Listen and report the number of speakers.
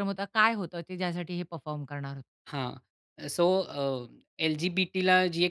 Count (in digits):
2